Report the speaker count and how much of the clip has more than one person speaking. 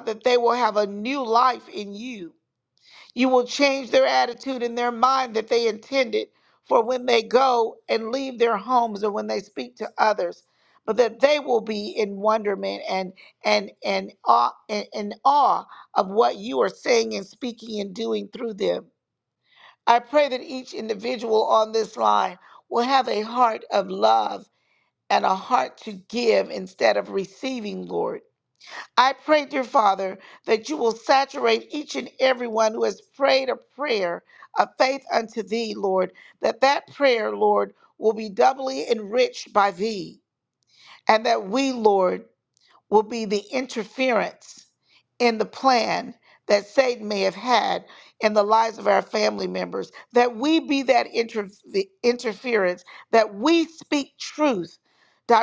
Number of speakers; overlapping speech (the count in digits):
1, no overlap